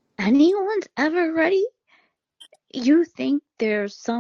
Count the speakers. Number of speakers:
one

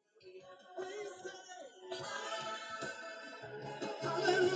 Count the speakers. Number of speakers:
zero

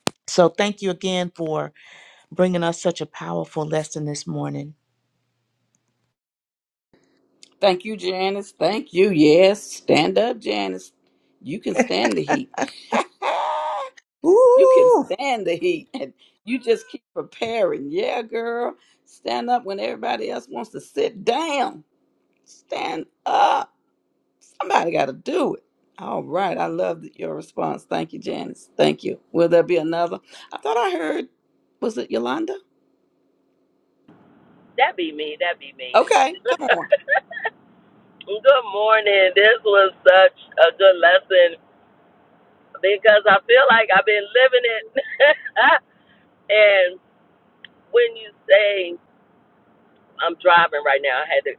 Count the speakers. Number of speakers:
three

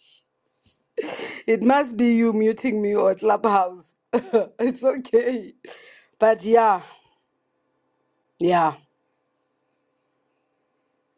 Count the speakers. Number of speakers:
one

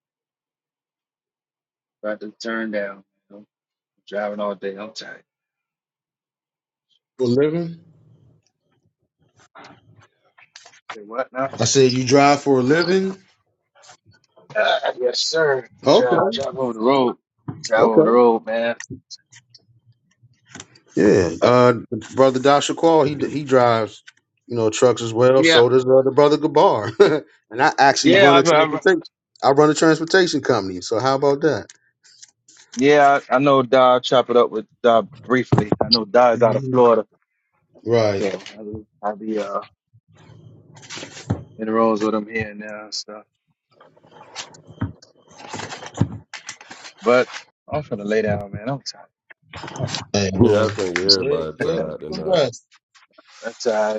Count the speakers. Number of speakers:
three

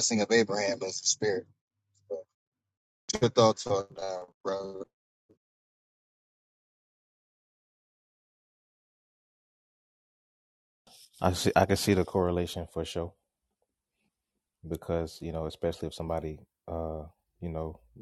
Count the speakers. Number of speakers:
two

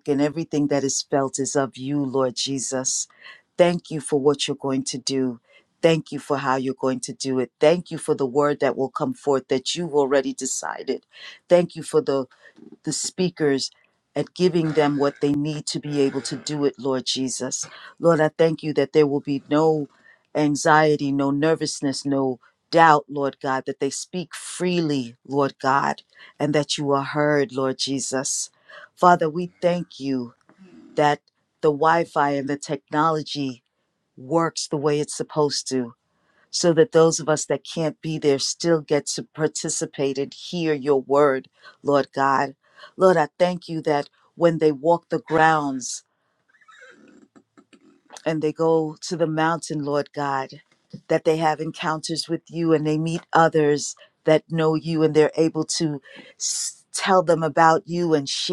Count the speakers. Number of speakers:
one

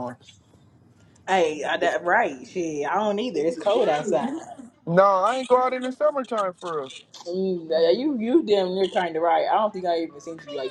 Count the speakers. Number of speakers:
two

